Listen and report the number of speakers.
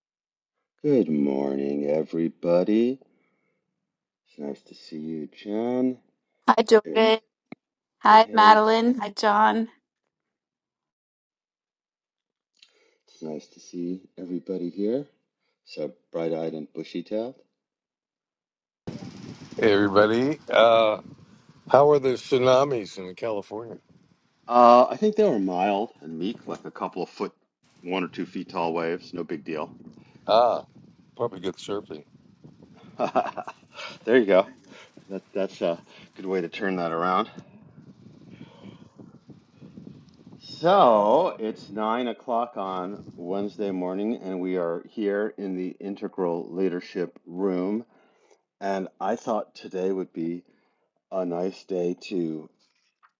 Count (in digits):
3